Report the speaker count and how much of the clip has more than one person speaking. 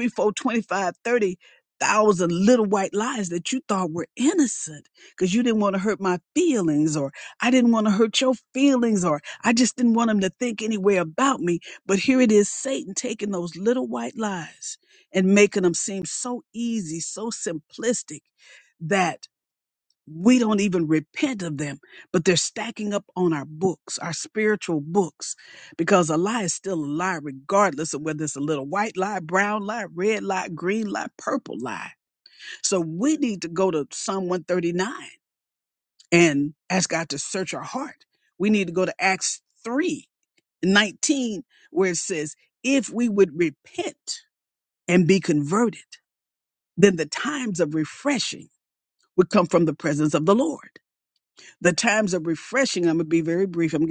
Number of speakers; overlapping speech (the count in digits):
1, no overlap